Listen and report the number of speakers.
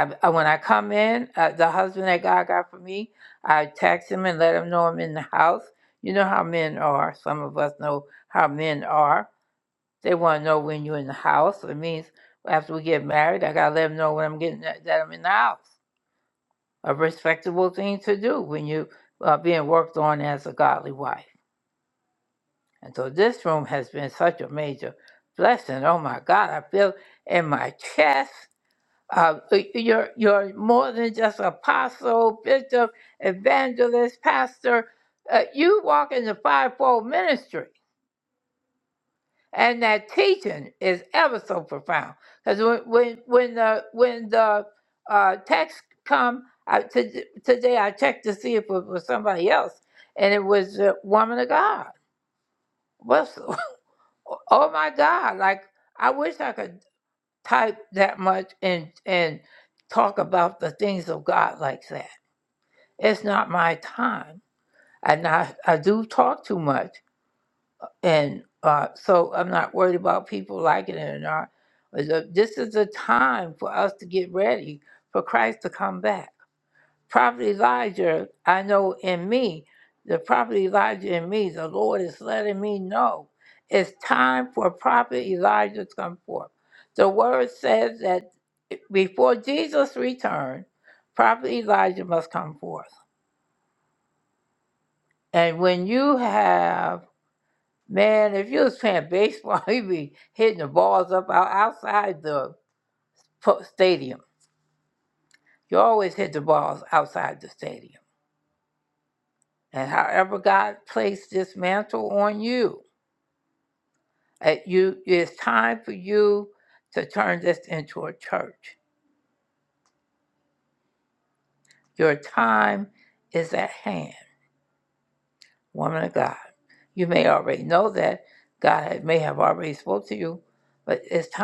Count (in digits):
1